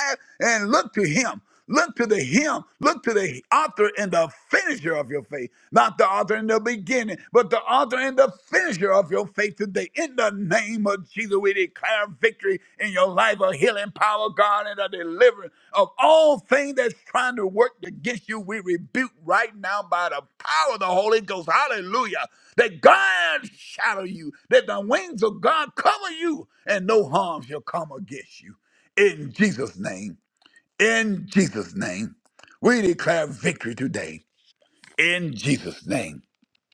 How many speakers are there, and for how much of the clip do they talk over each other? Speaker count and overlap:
1, no overlap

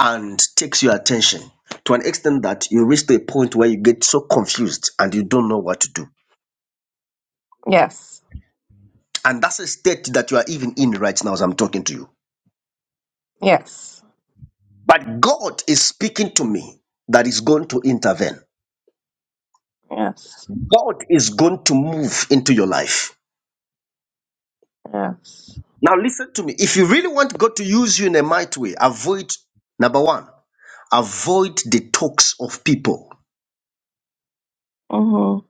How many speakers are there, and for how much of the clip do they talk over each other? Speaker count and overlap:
2, no overlap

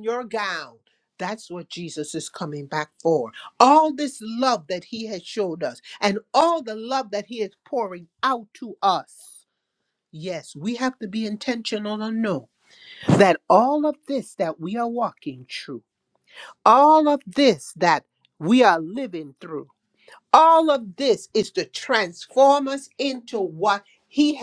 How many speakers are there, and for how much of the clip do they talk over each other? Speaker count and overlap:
1, no overlap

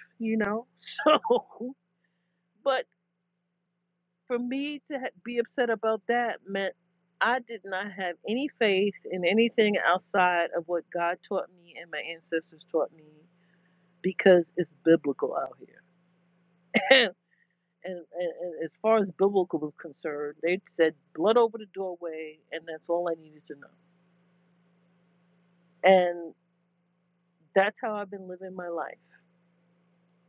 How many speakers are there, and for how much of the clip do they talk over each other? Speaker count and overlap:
1, no overlap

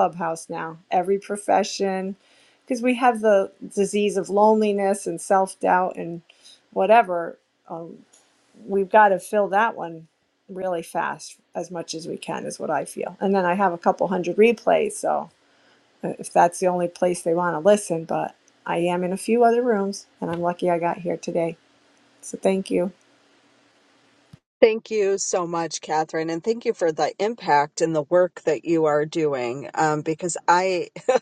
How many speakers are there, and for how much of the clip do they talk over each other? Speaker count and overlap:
2, no overlap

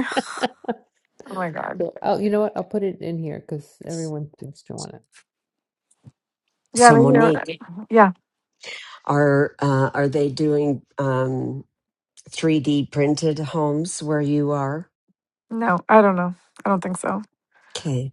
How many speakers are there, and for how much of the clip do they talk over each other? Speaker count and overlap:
3, about 4%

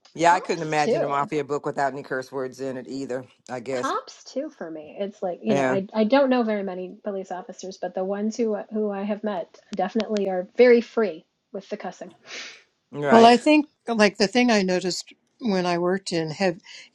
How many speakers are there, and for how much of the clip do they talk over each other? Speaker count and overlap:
3, about 10%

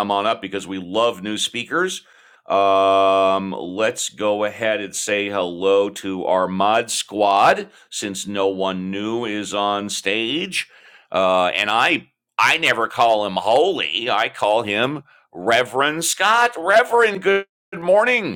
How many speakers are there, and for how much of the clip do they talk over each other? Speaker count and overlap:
1, no overlap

